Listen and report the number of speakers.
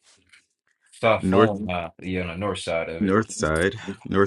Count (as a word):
two